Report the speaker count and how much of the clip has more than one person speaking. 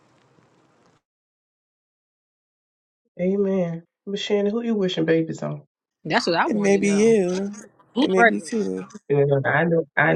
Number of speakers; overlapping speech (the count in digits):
3, about 11%